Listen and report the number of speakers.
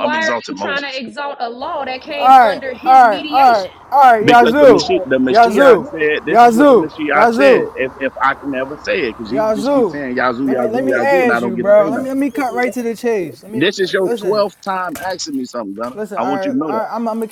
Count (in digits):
3